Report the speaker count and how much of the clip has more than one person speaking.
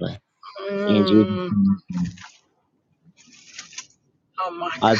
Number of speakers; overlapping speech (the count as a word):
two, about 17%